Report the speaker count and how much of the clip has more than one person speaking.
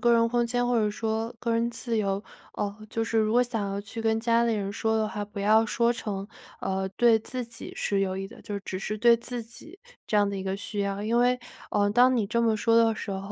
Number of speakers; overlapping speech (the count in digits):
1, no overlap